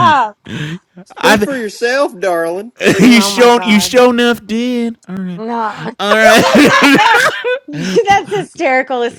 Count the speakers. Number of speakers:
three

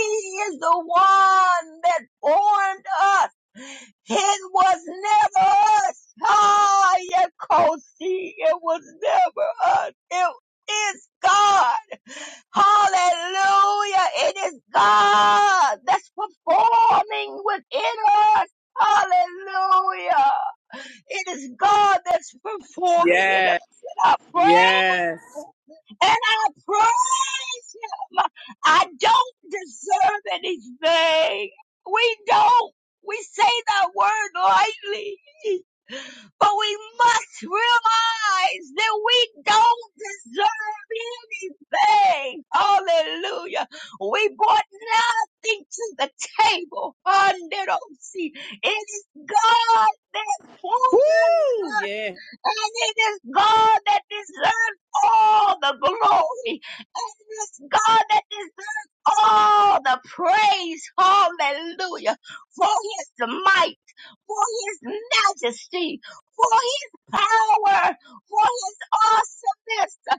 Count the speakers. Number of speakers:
two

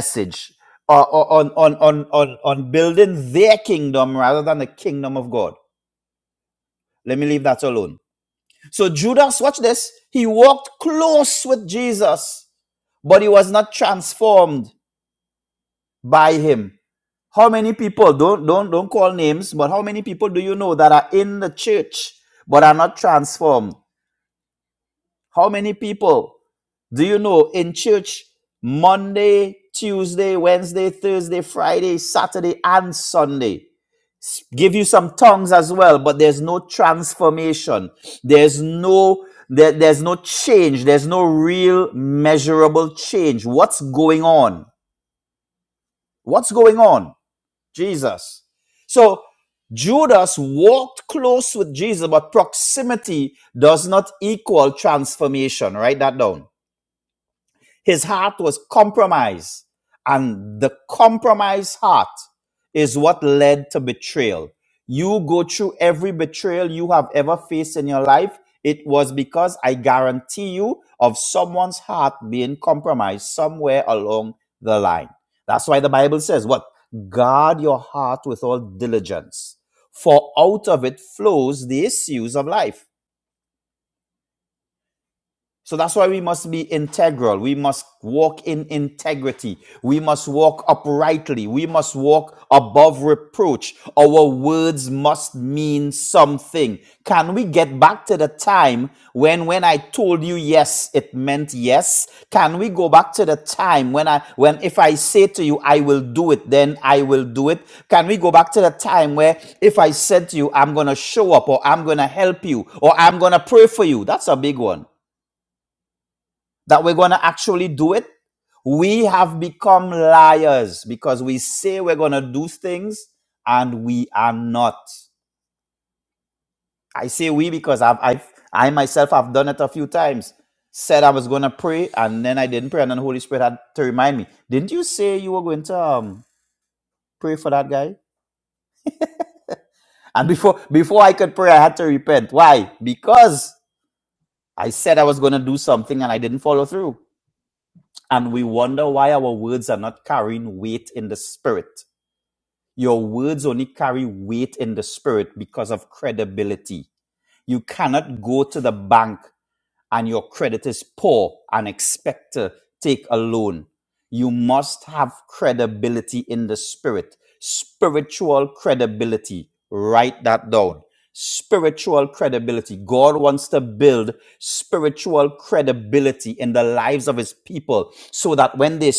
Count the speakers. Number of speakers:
one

